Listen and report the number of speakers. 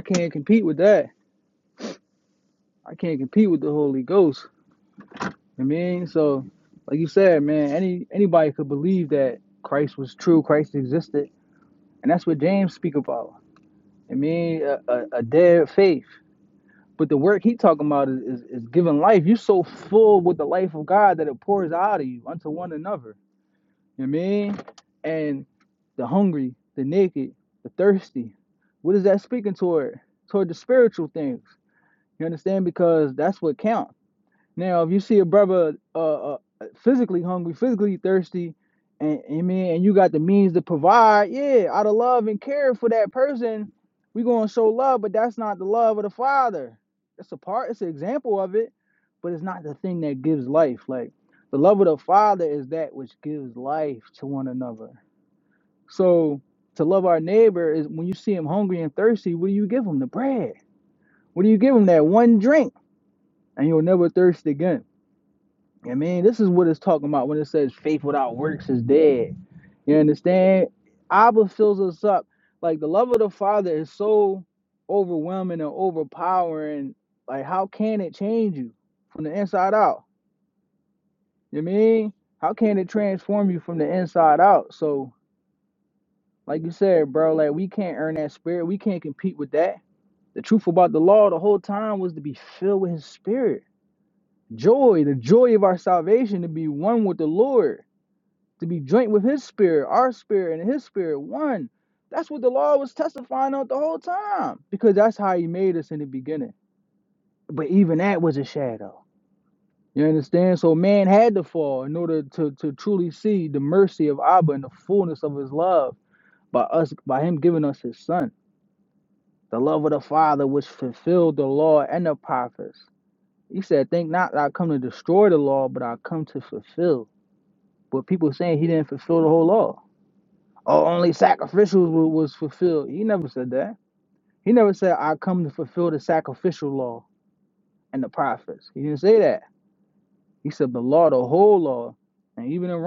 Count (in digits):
1